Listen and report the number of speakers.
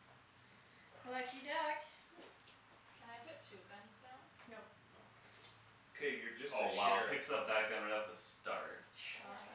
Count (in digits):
4